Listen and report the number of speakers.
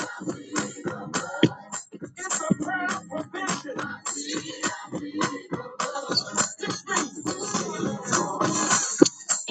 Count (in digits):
0